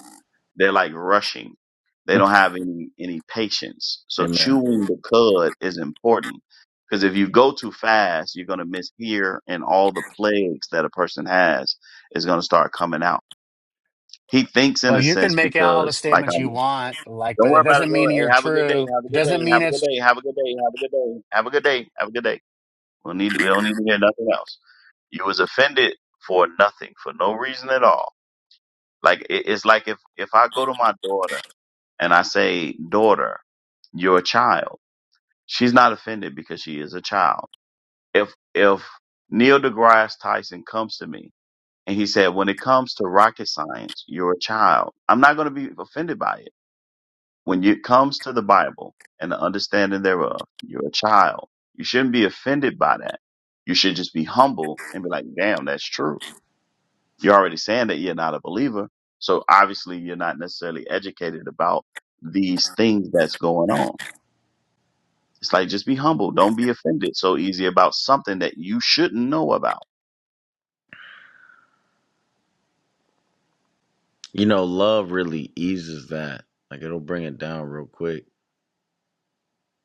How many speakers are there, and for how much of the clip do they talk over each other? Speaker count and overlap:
three, about 6%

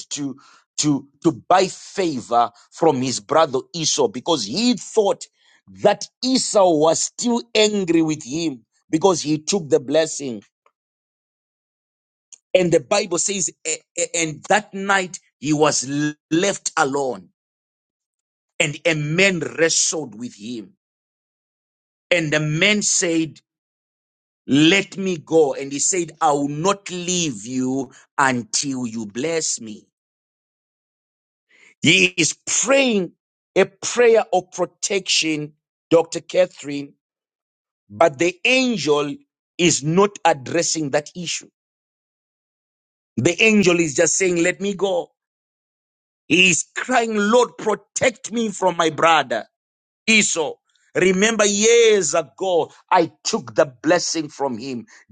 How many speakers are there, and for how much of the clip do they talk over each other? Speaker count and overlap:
one, no overlap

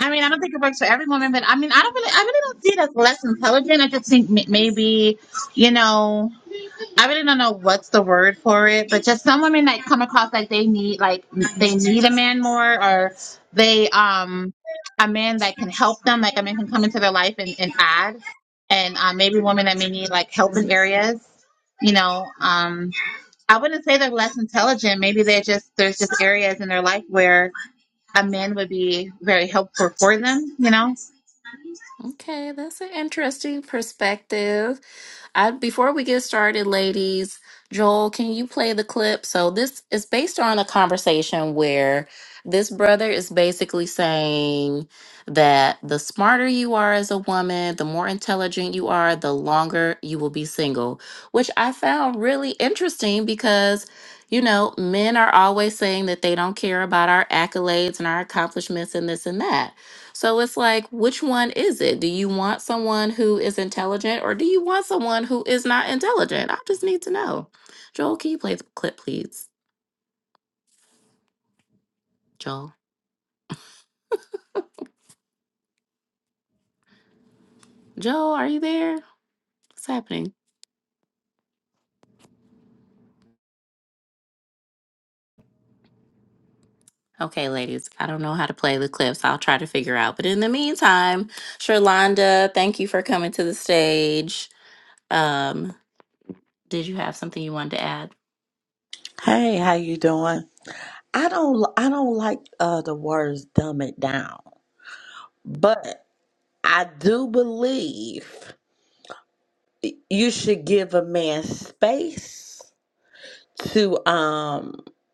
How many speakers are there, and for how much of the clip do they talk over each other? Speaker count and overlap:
three, no overlap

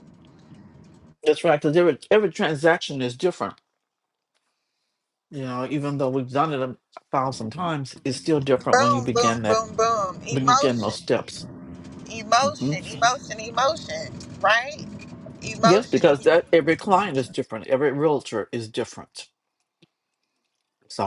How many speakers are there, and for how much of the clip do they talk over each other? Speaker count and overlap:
two, about 12%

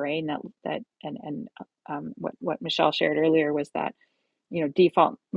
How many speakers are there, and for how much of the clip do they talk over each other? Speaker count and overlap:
one, no overlap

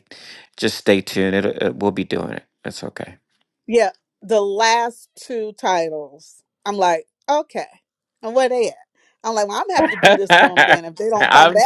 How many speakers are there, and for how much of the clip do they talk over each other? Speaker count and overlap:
two, about 4%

